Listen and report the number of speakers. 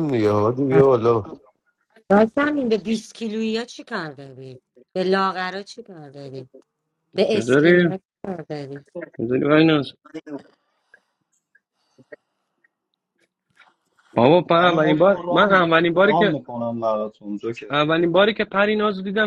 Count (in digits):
4